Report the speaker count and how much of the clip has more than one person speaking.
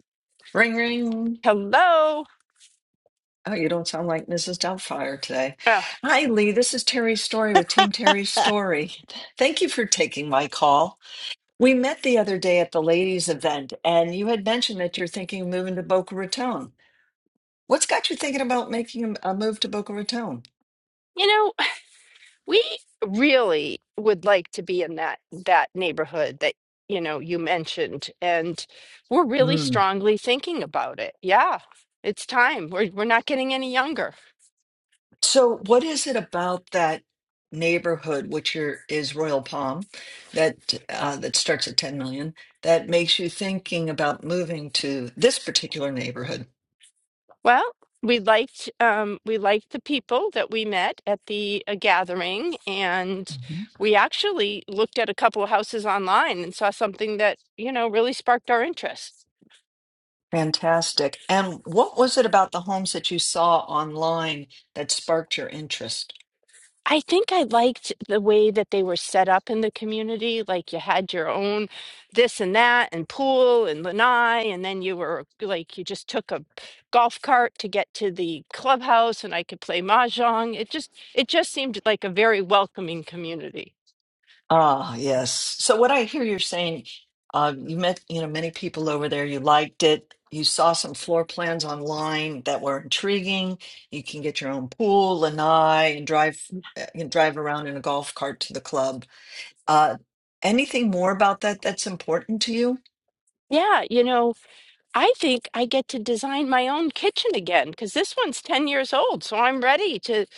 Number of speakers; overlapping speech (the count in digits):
2, under 1%